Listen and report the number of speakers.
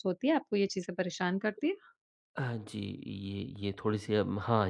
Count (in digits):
2